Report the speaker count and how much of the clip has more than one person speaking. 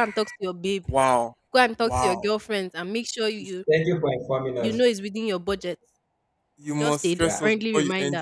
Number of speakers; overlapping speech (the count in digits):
3, about 27%